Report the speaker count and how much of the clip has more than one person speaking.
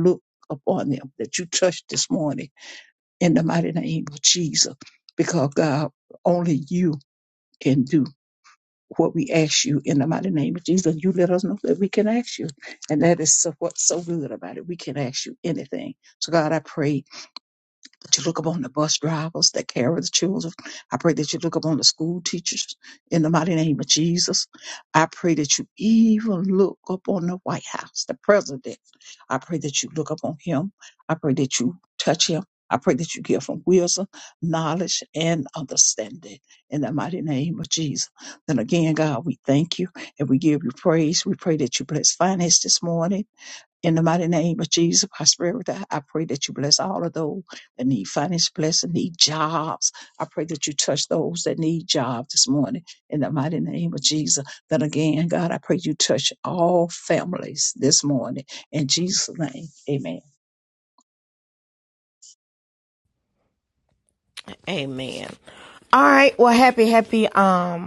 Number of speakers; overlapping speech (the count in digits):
2, no overlap